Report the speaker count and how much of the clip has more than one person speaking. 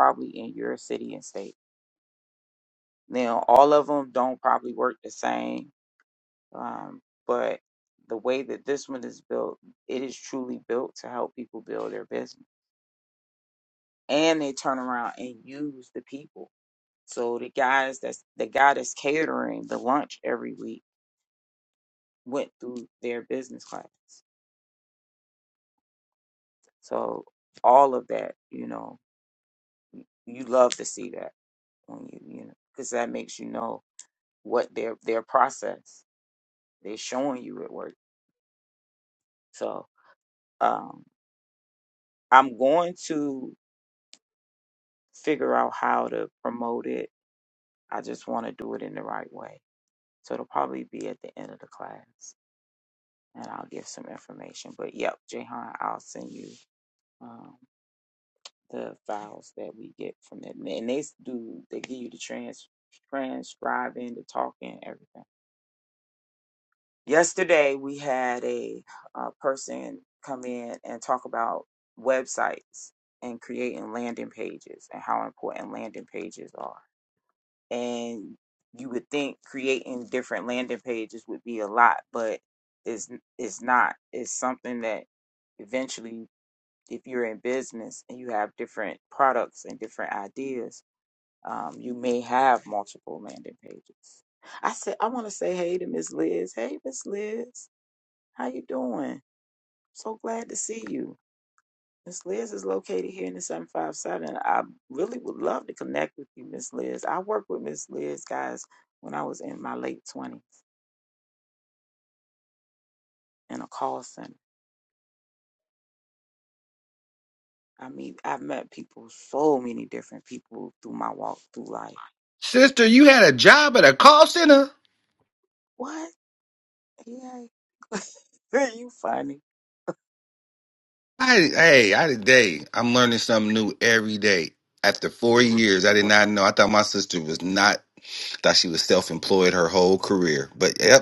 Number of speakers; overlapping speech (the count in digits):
2, under 1%